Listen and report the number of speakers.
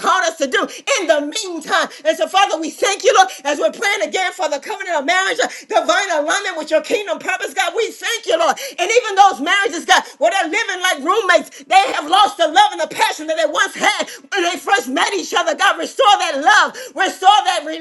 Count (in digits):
1